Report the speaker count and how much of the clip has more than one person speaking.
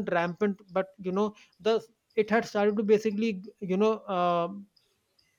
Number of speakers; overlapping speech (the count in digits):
1, no overlap